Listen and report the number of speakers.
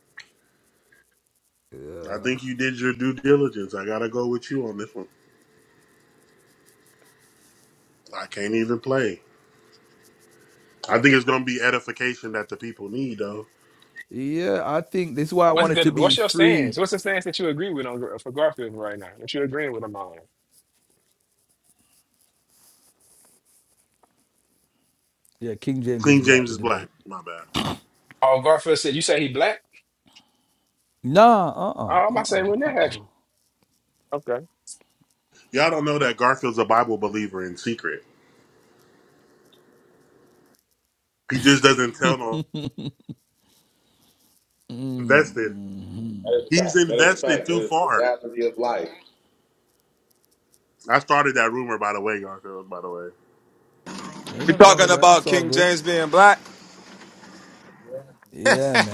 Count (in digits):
5